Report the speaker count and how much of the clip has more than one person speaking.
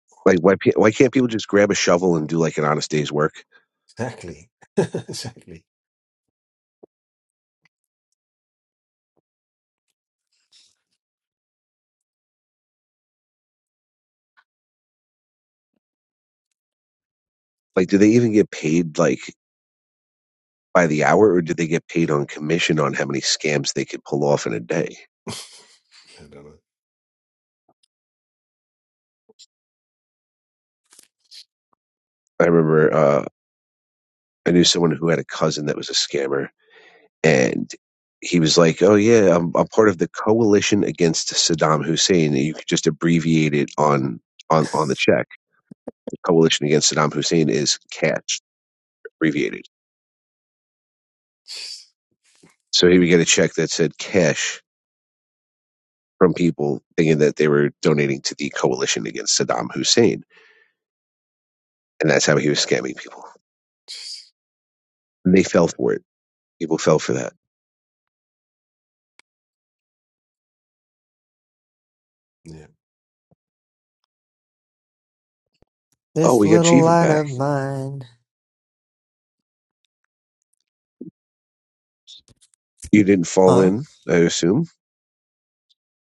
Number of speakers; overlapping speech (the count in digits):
3, about 1%